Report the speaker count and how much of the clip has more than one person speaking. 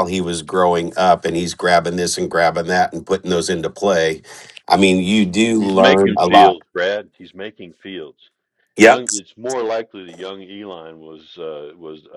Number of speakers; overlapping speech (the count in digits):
2, about 10%